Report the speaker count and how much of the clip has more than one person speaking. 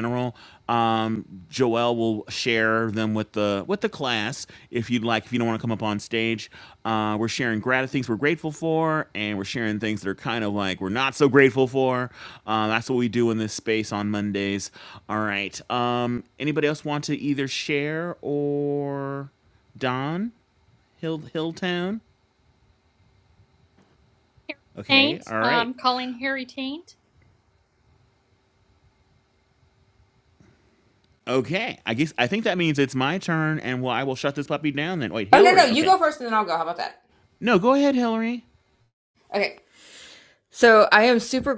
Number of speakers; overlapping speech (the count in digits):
3, about 3%